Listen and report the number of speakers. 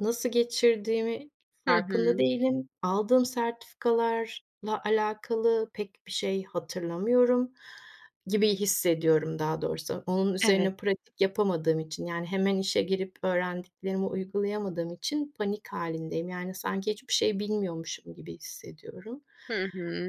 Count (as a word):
two